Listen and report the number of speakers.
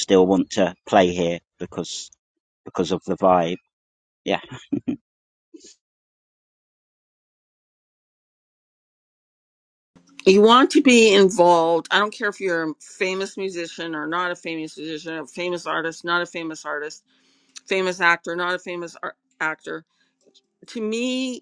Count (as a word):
two